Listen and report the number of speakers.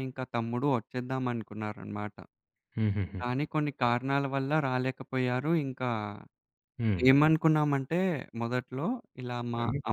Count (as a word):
two